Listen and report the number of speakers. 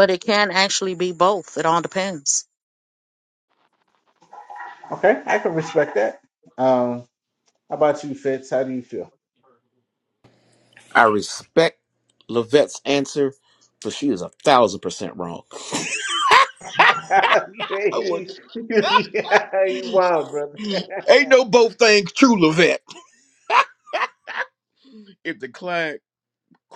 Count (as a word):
three